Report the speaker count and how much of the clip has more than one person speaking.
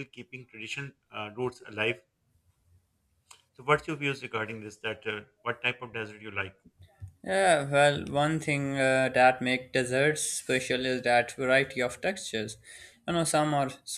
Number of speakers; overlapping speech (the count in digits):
2, no overlap